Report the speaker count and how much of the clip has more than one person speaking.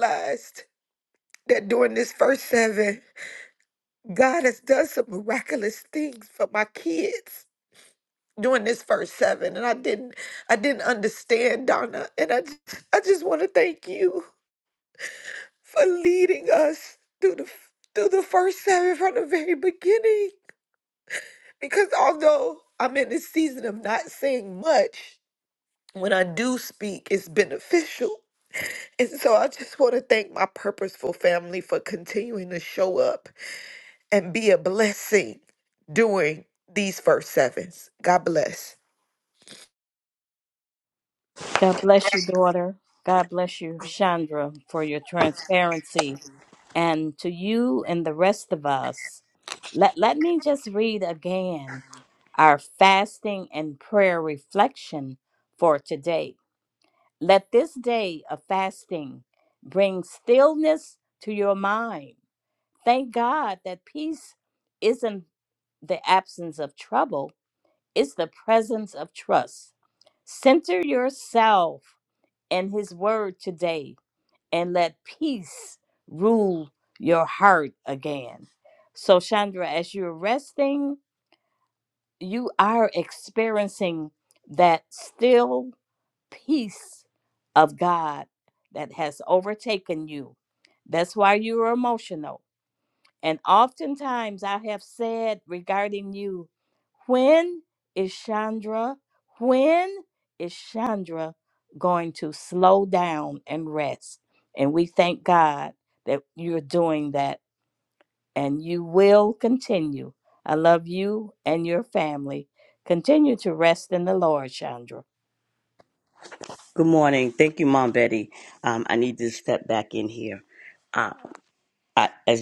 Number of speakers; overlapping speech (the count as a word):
three, no overlap